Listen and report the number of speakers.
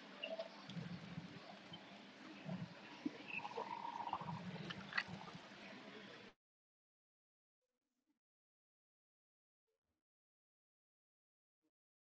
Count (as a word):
zero